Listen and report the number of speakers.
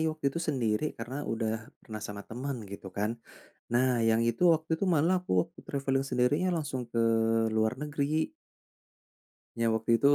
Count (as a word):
one